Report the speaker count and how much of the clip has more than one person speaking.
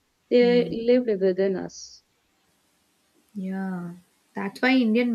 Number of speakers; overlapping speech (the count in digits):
2, about 6%